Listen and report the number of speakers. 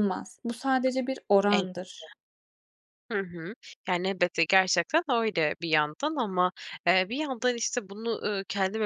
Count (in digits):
2